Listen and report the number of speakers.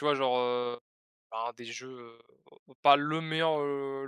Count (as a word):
one